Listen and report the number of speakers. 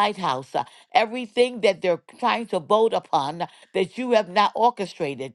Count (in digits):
1